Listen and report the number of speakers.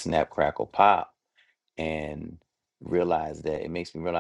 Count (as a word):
one